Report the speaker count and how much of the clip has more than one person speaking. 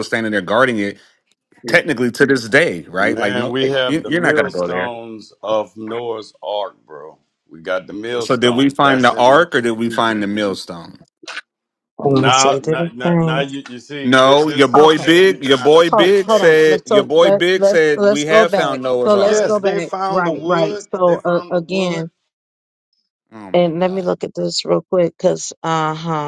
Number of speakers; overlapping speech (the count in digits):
3, about 49%